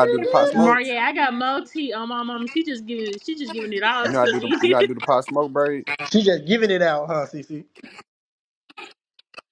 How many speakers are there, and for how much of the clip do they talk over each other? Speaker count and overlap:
3, about 16%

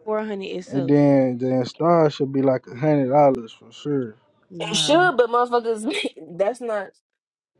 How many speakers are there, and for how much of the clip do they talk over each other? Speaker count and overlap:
3, about 9%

